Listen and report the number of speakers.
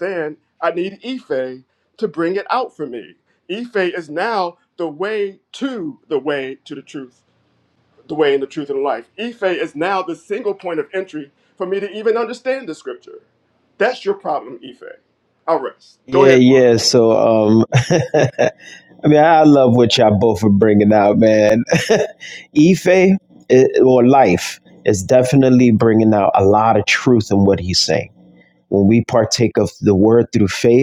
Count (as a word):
two